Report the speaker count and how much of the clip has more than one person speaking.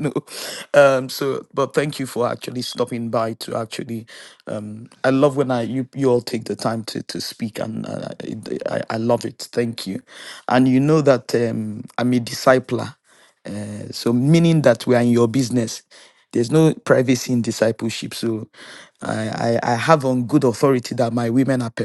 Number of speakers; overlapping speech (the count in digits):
1, no overlap